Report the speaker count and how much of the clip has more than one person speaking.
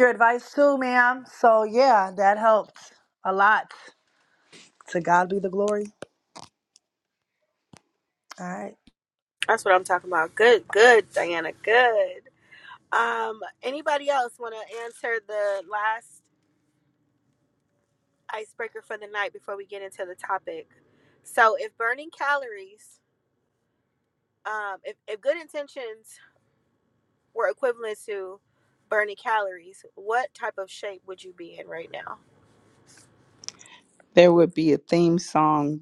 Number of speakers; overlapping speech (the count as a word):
three, no overlap